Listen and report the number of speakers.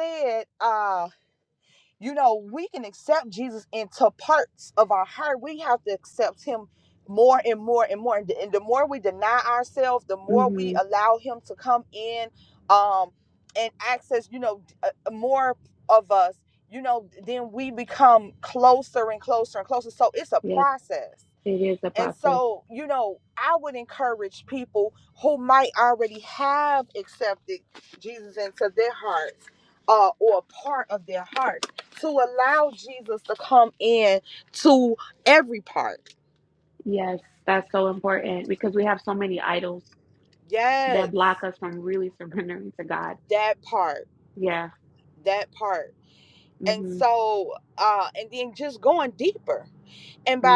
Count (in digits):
2